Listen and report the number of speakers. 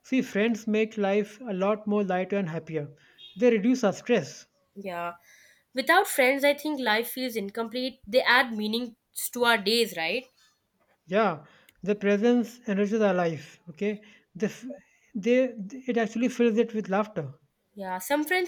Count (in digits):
2